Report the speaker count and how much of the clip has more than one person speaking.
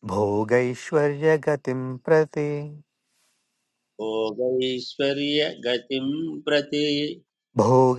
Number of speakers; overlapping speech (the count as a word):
two, no overlap